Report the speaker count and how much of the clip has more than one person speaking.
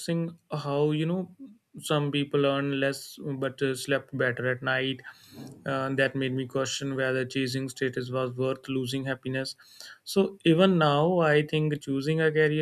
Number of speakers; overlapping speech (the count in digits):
1, no overlap